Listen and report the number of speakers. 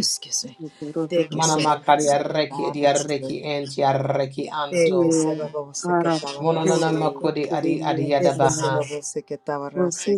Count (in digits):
3